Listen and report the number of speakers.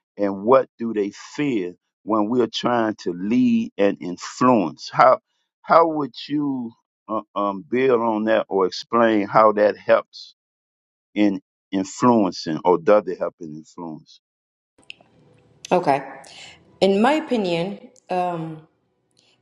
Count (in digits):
2